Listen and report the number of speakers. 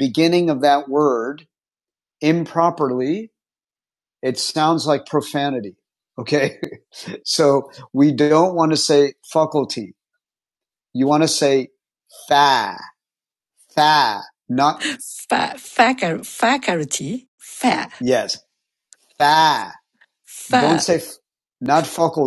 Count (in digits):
2